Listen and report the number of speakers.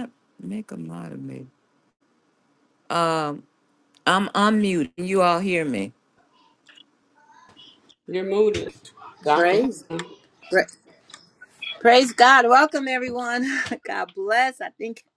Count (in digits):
3